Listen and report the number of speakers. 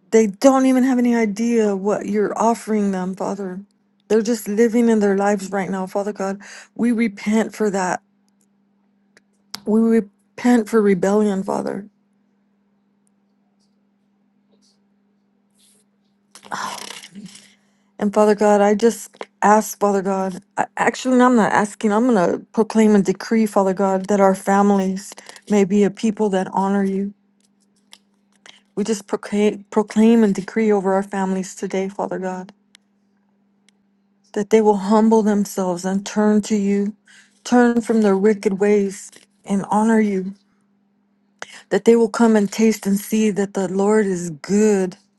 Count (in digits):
1